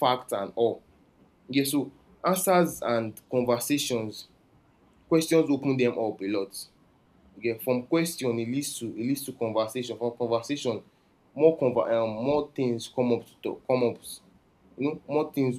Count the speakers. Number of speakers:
1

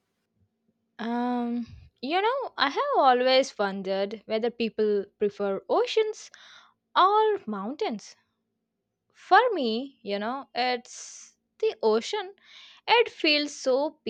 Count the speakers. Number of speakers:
1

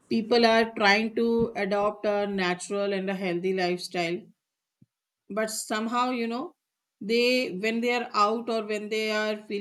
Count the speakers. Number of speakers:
1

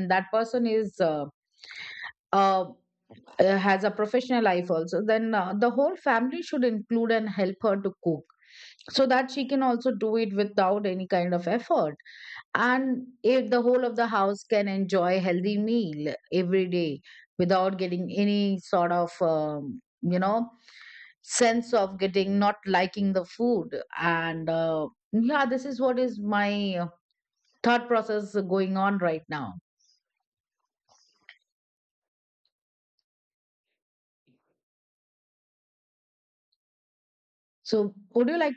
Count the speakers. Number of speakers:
1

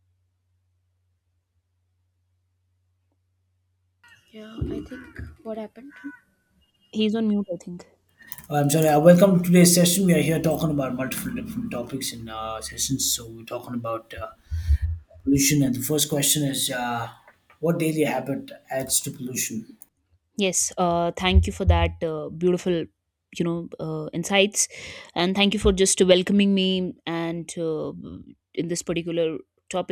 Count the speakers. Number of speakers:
3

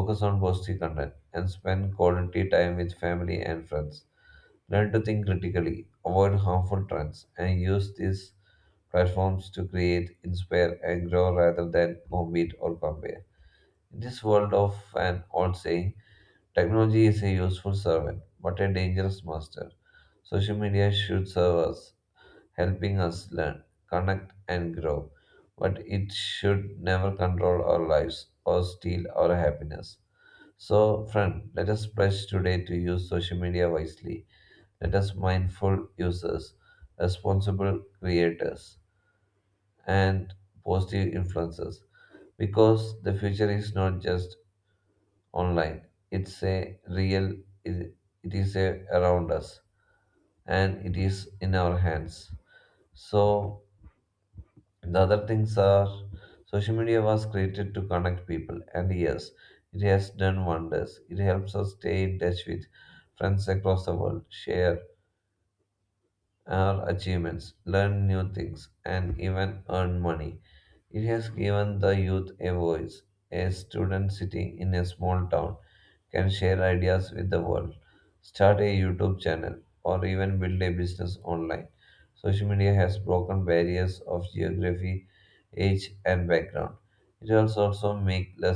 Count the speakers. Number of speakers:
1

